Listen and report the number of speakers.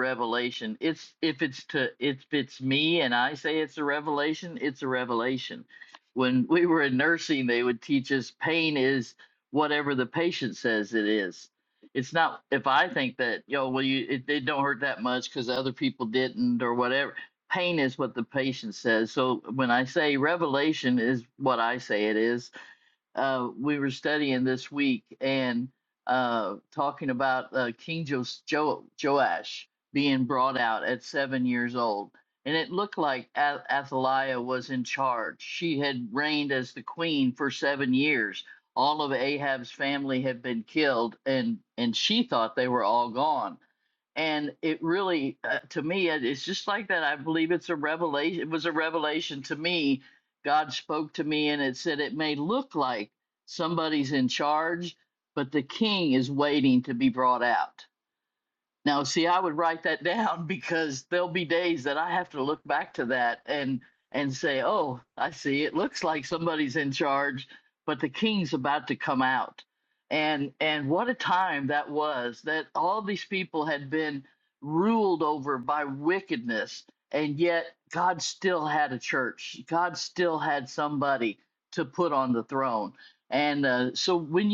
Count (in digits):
1